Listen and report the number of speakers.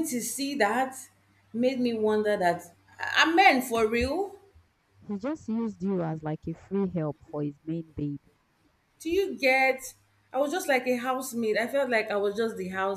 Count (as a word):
two